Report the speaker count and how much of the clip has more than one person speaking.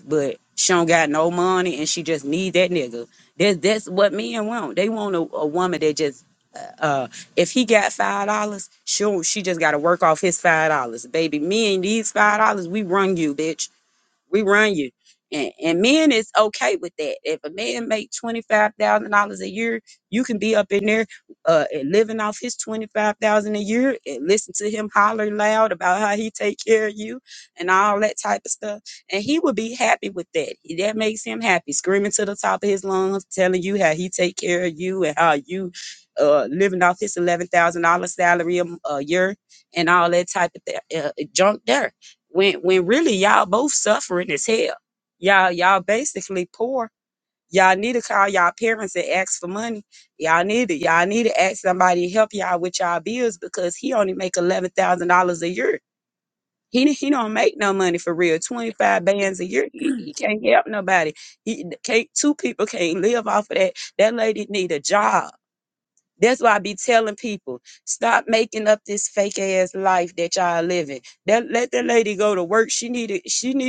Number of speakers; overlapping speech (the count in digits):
1, no overlap